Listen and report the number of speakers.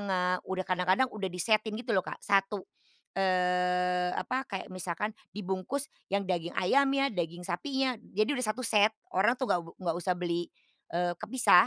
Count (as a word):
one